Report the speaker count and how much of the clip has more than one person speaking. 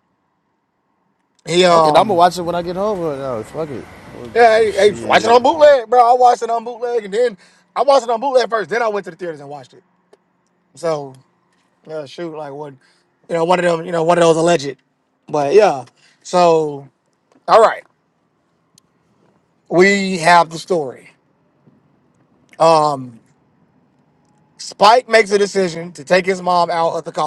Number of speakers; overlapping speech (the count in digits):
2, about 4%